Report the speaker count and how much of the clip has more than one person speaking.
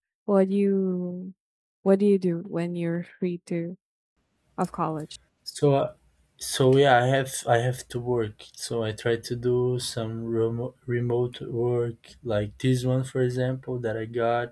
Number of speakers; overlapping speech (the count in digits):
2, no overlap